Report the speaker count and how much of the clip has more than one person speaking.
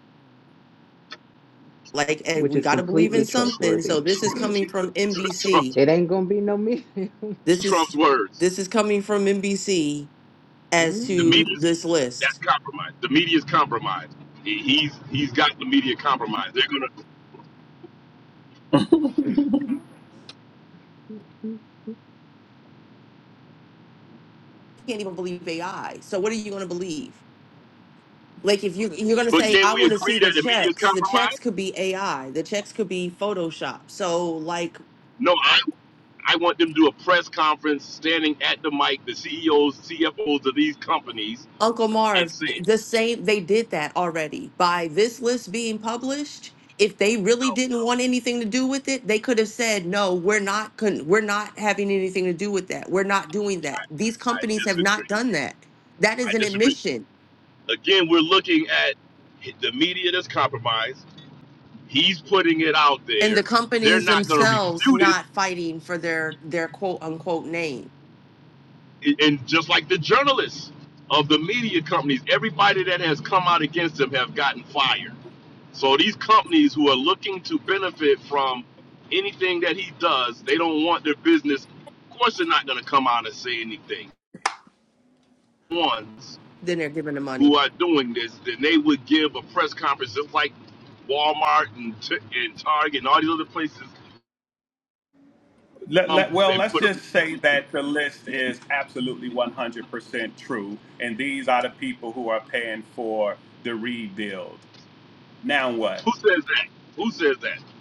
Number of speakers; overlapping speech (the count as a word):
four, about 10%